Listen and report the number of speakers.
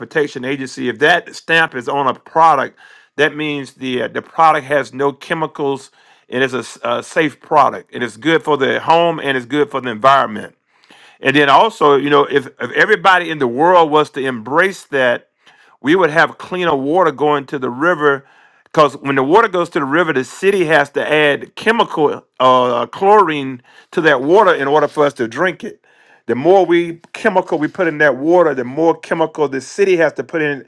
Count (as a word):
one